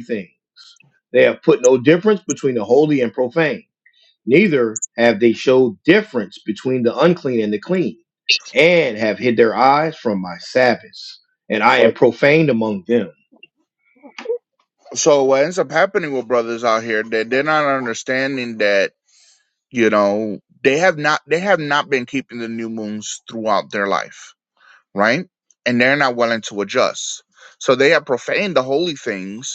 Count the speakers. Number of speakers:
2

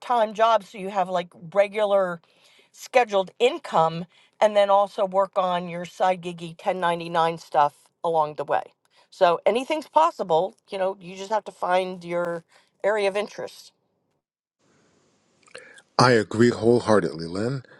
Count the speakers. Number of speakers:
2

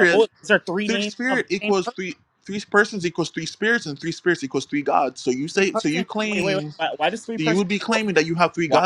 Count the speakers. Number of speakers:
2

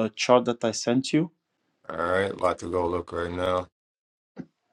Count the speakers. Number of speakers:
2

